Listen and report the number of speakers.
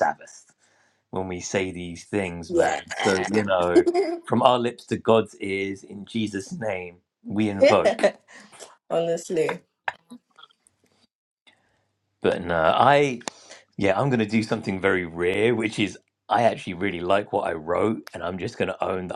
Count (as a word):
two